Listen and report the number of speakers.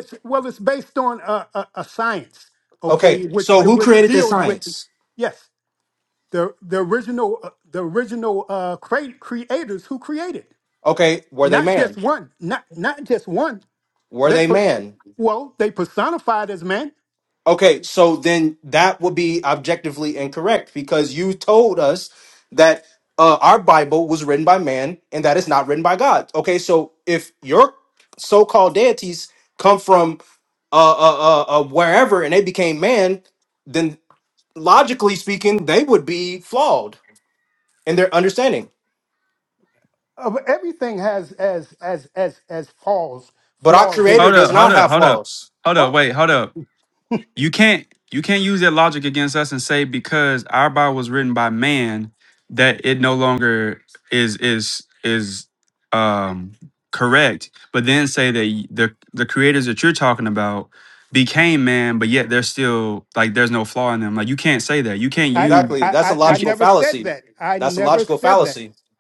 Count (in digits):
3